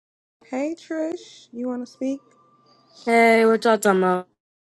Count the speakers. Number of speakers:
2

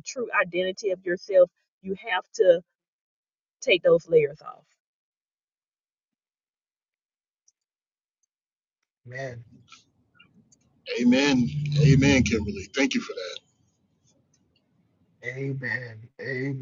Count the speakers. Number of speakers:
3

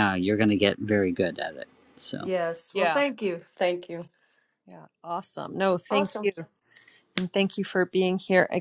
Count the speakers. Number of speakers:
3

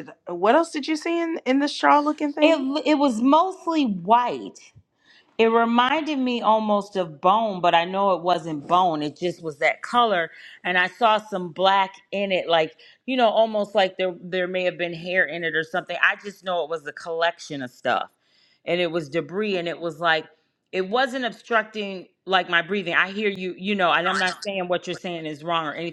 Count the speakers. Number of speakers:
2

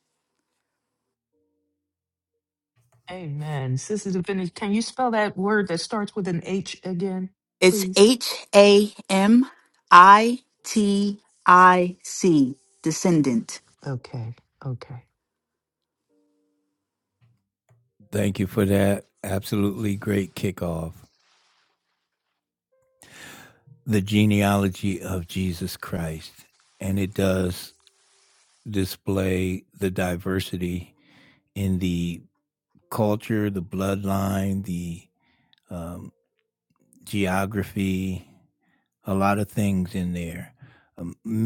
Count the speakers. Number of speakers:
3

